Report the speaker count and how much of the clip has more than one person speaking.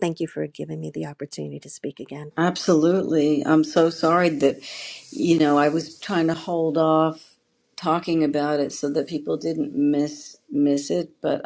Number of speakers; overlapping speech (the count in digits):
2, no overlap